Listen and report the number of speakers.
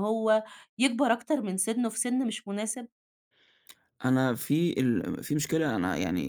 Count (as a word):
two